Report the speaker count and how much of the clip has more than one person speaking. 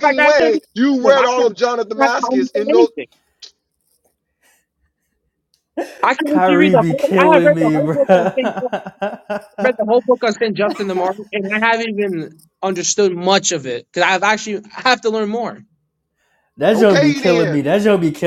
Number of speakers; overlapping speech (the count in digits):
3, about 29%